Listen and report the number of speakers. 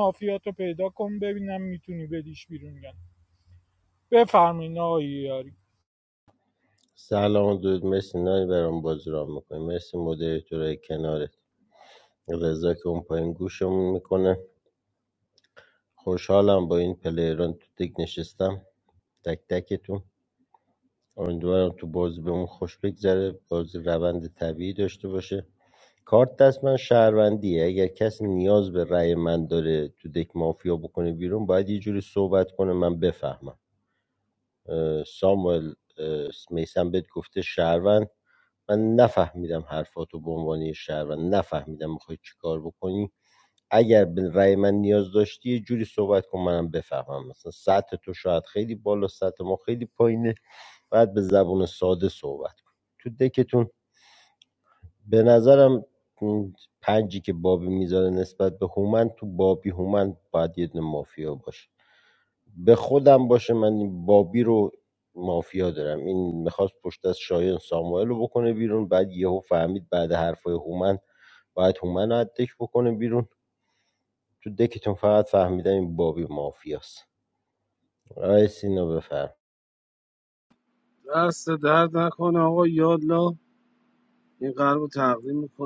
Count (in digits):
3